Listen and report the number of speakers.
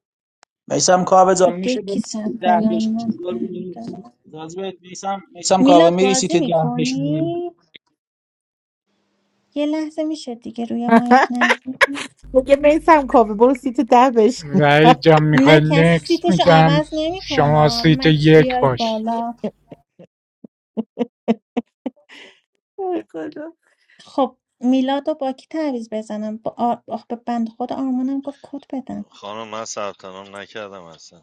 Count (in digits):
5